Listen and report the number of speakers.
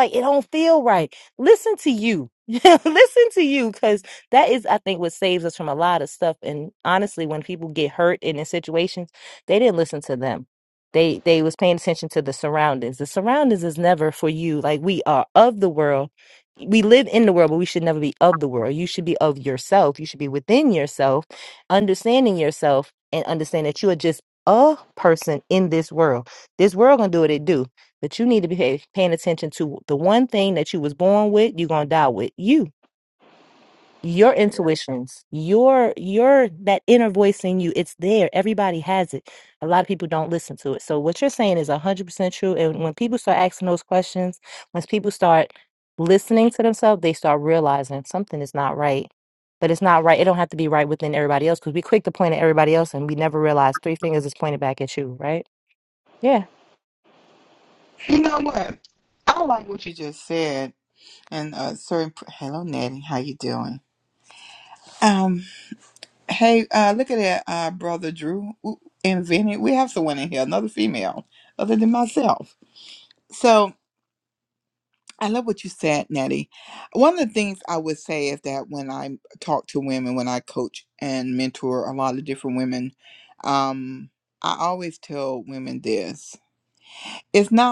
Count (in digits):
2